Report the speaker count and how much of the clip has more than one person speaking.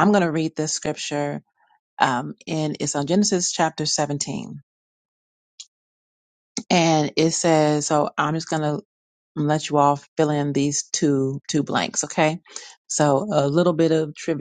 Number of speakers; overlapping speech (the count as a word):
one, no overlap